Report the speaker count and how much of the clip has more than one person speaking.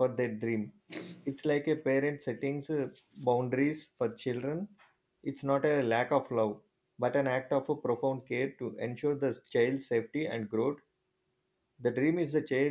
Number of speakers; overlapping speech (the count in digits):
1, no overlap